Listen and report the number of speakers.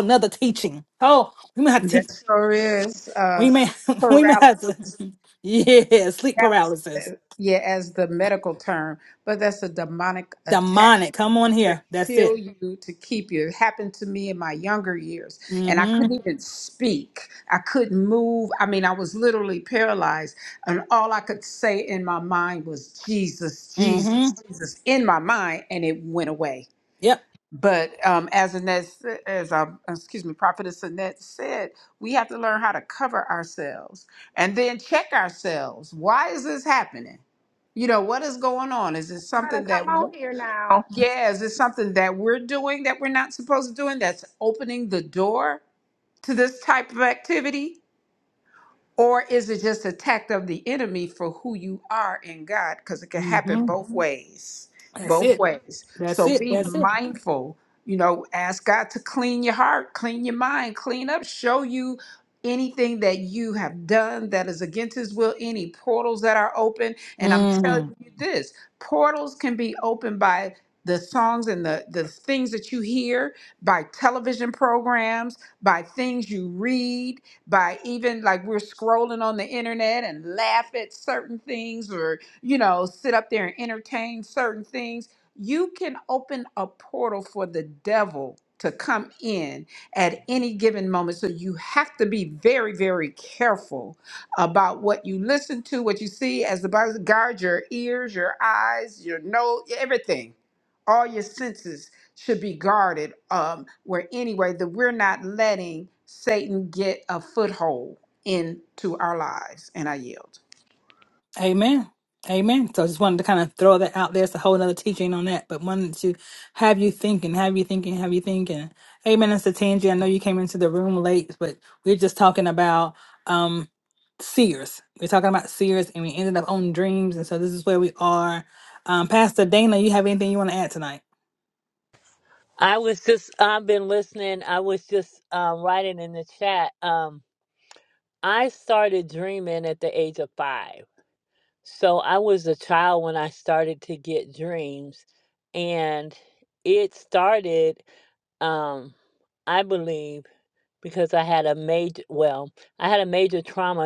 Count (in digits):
4